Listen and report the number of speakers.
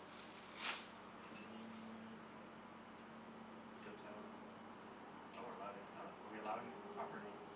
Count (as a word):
one